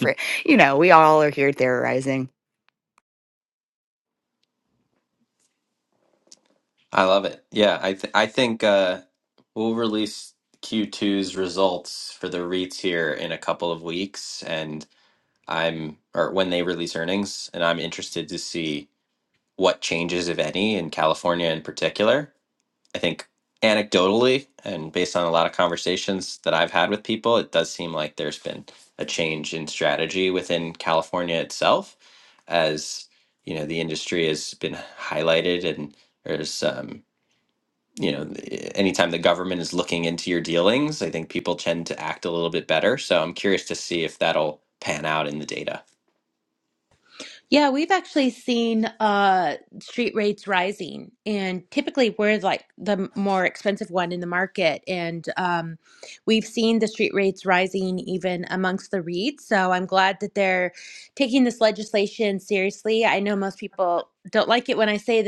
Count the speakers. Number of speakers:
three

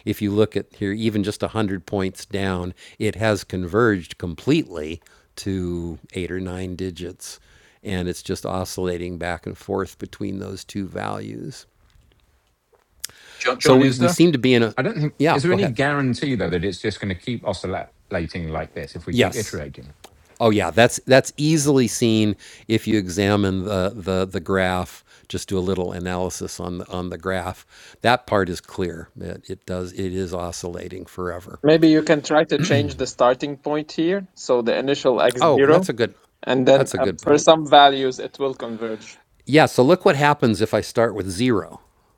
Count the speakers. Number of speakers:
three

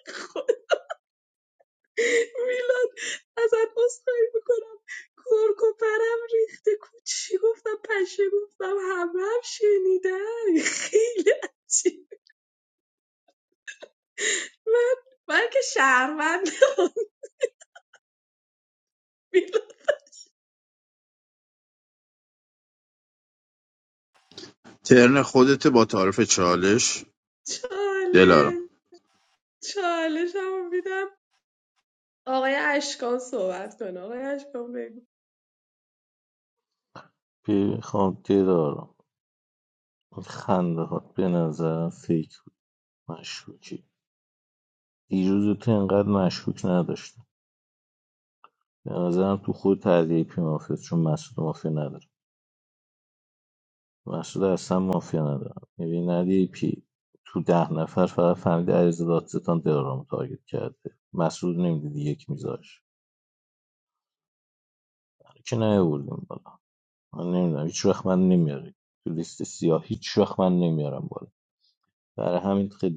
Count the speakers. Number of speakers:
three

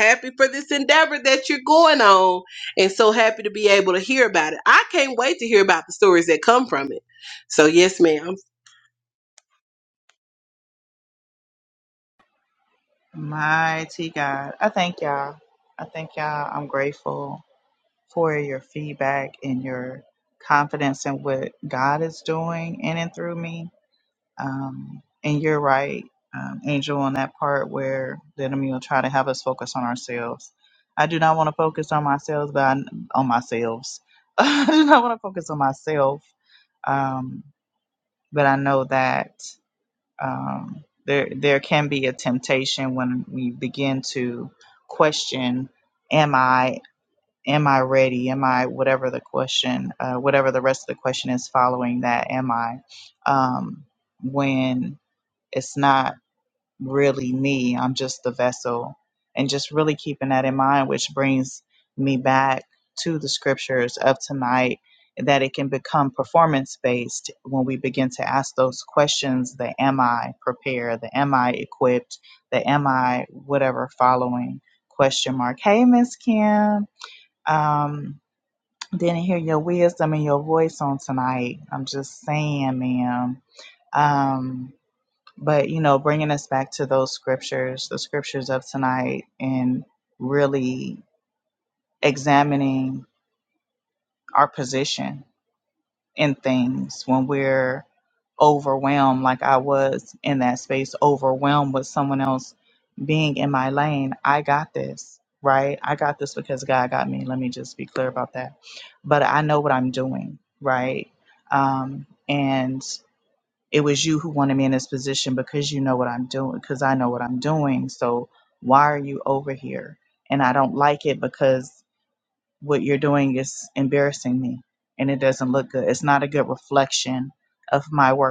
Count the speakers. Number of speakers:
two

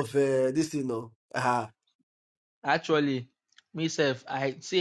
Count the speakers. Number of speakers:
two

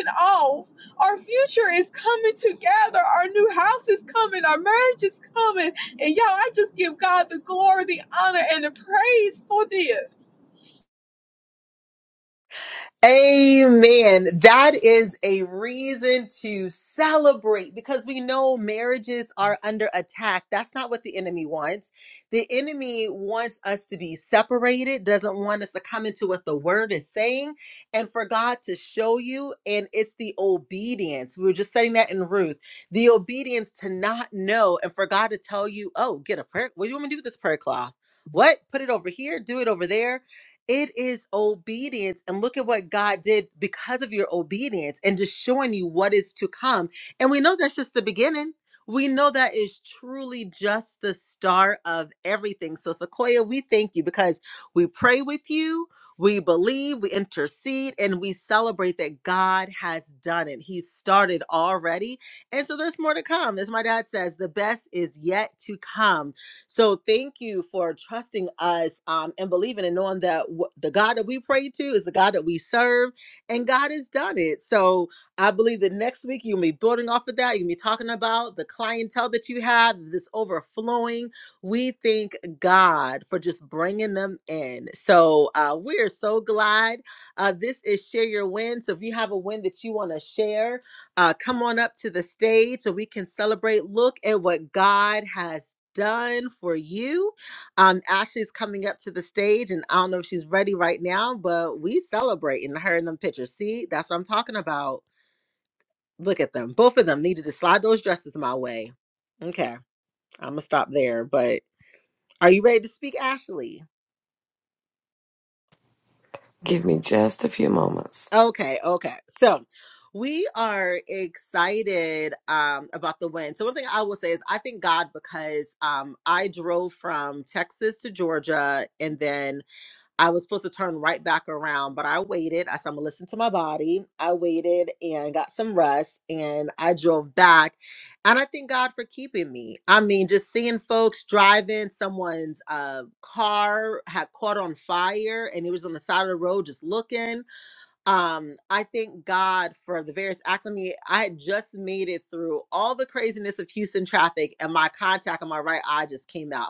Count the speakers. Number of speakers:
three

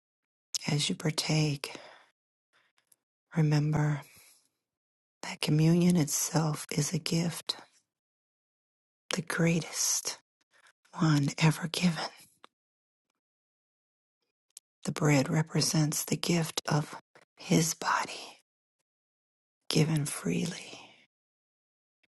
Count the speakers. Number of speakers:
one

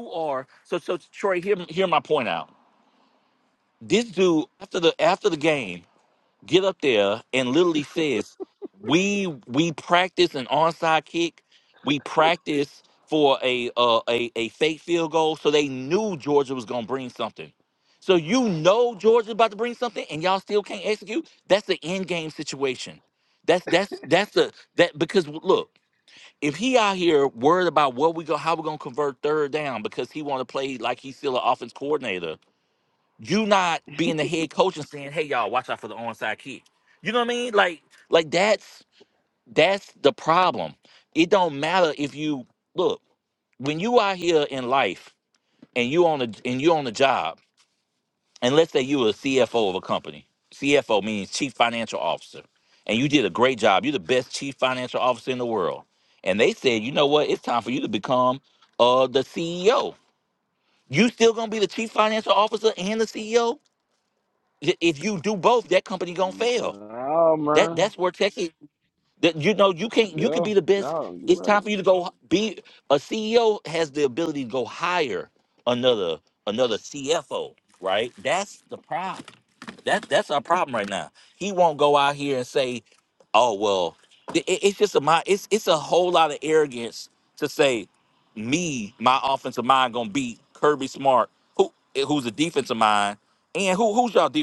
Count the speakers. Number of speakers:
two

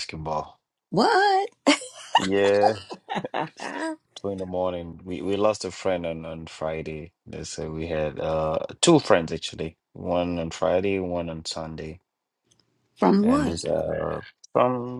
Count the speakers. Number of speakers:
two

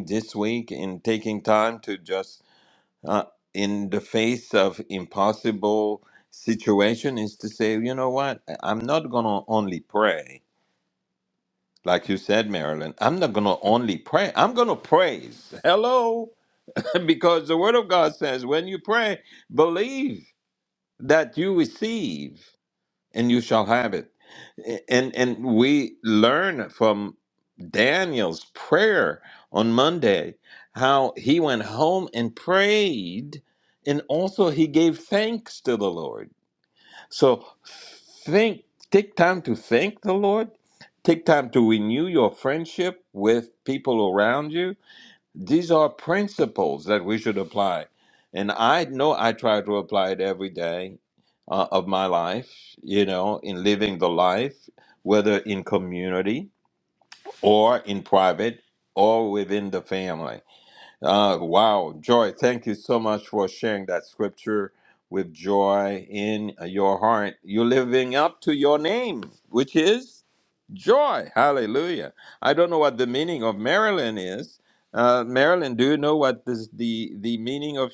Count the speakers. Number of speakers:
one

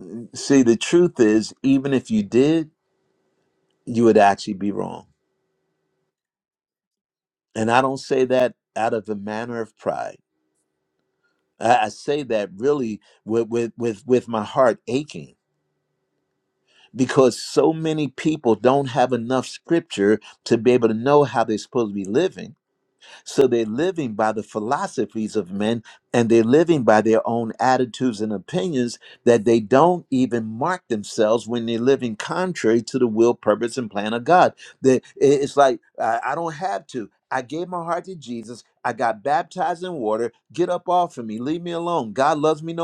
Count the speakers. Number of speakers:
one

